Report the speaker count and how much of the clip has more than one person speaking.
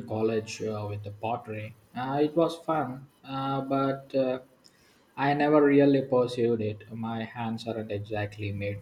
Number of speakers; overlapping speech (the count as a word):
one, no overlap